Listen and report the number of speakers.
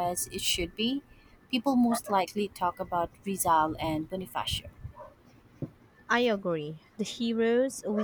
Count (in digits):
2